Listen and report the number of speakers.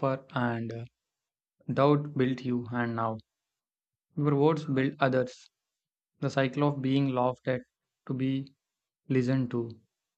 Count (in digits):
1